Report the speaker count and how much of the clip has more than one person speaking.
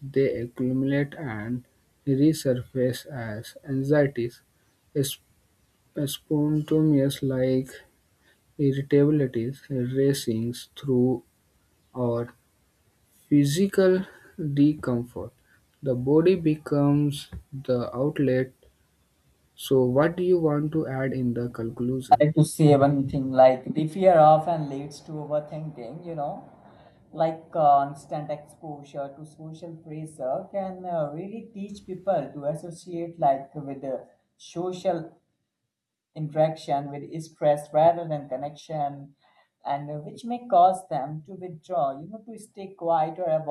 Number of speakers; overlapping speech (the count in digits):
2, under 1%